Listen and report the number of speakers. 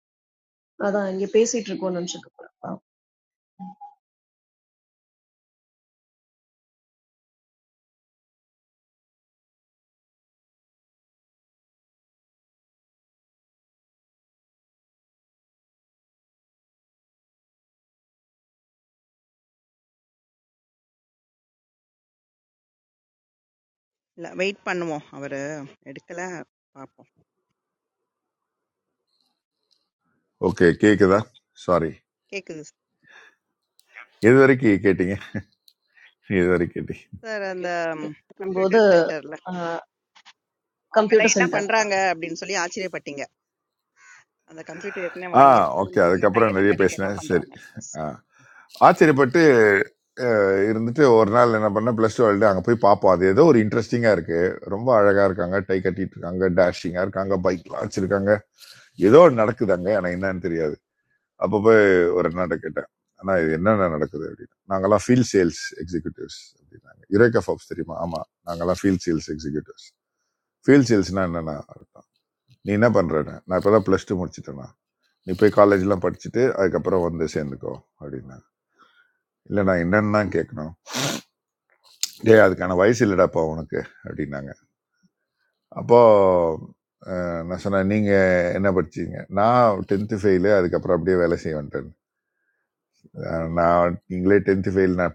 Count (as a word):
three